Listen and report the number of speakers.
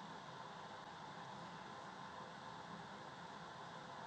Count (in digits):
0